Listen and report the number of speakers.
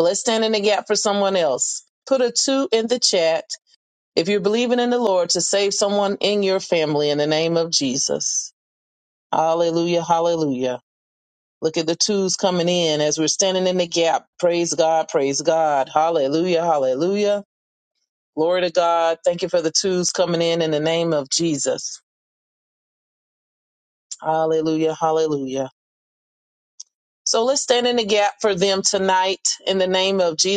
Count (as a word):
one